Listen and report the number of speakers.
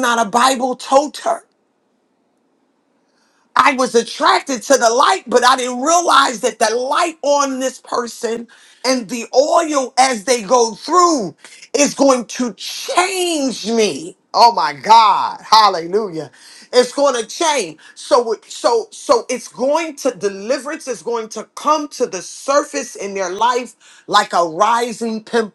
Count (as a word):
one